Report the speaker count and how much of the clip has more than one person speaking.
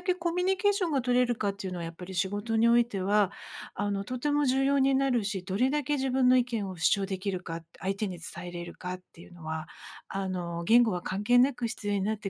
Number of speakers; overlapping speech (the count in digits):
1, no overlap